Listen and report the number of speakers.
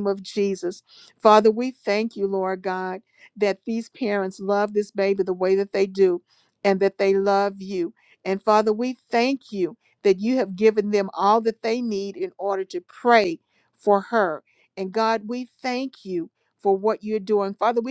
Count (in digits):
1